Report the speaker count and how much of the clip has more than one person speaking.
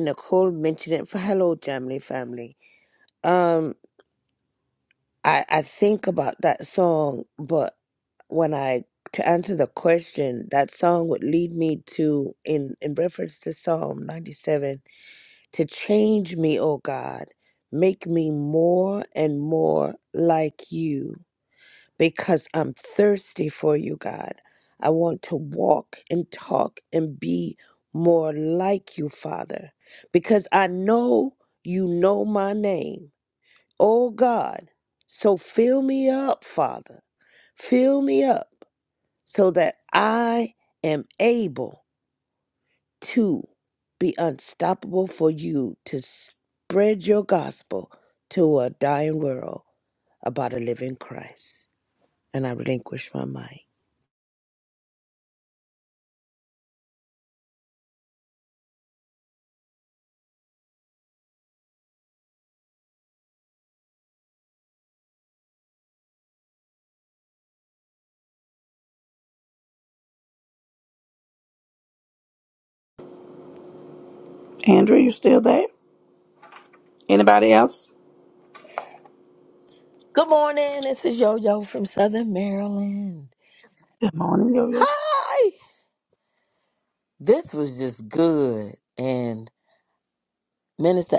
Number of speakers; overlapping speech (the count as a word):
three, under 1%